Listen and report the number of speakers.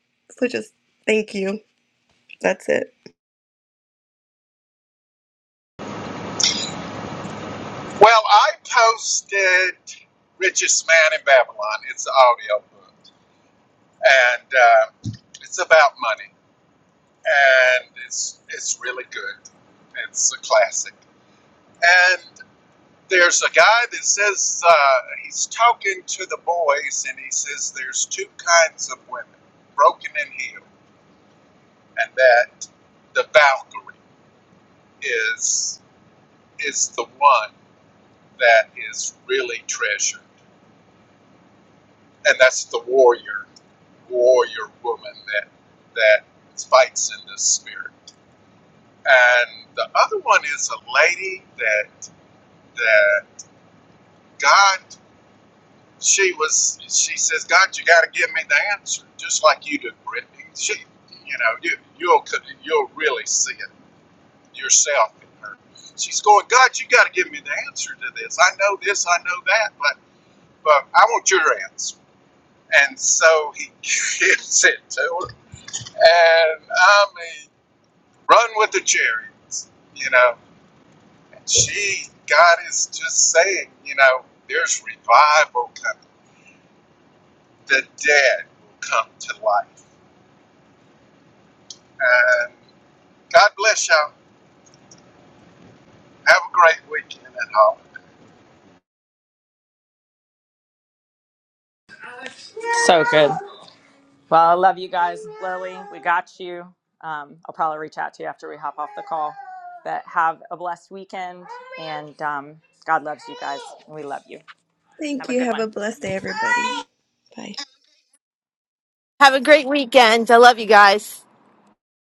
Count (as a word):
four